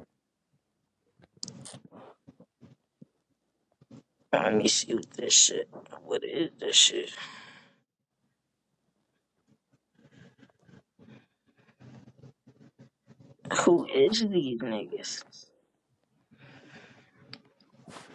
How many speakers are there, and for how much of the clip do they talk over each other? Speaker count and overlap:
one, no overlap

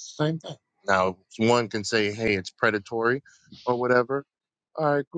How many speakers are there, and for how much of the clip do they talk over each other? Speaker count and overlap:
one, no overlap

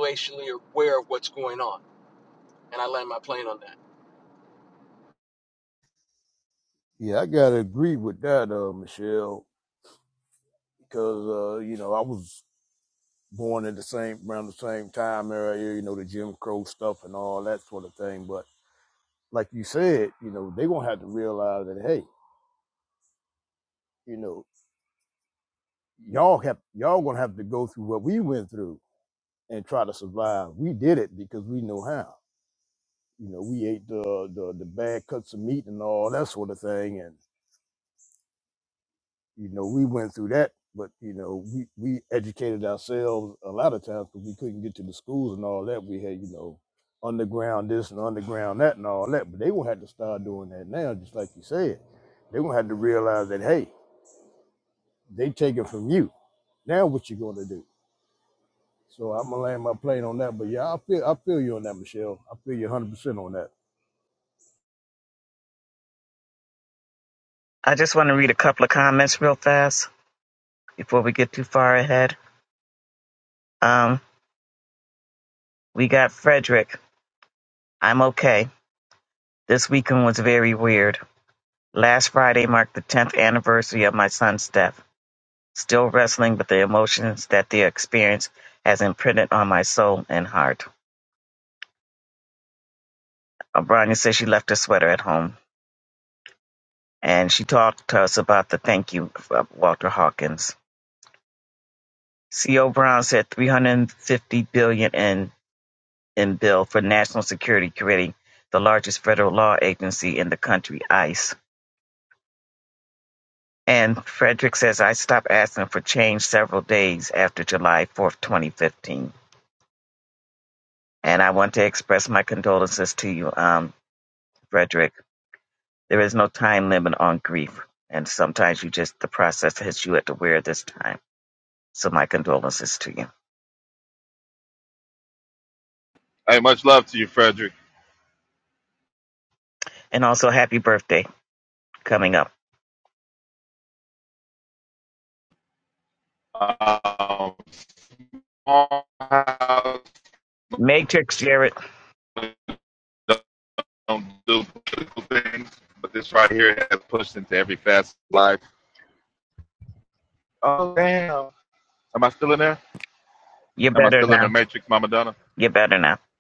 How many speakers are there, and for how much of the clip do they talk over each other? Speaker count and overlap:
four, under 1%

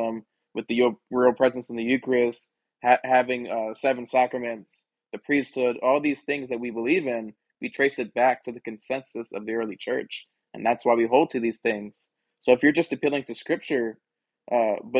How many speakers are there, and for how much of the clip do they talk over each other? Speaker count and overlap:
one, no overlap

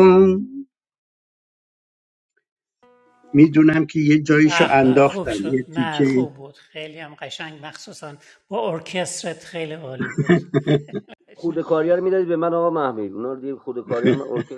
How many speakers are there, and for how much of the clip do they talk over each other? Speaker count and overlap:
three, about 13%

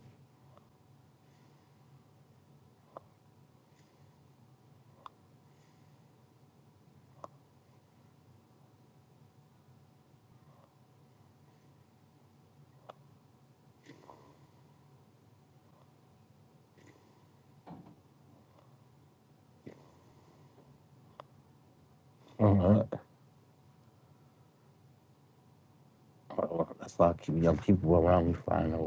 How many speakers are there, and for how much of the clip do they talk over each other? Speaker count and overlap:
one, no overlap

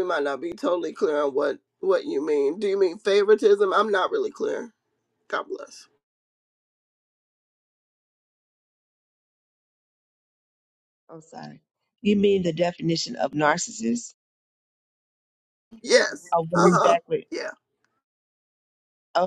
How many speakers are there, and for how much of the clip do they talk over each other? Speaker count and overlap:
two, about 2%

